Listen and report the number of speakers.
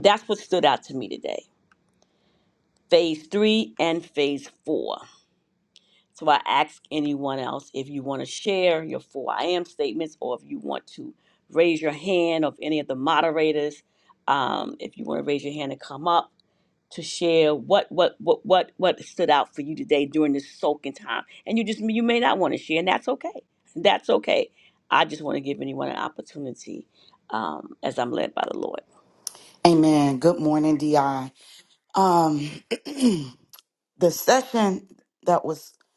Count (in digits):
2